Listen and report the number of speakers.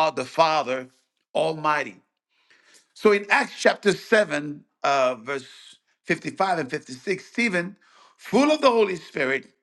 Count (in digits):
1